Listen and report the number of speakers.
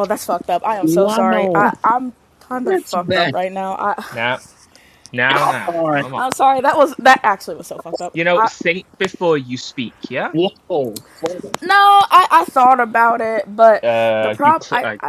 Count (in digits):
3